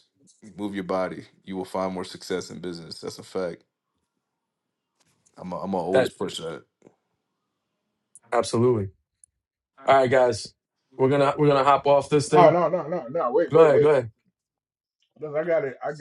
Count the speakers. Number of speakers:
3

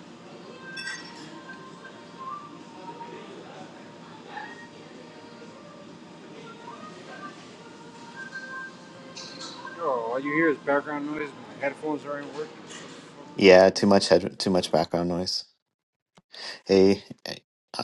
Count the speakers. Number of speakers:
2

